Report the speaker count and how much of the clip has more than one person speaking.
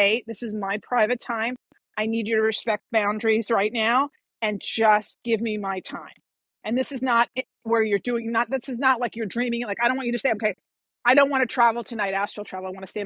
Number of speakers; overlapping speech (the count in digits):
1, no overlap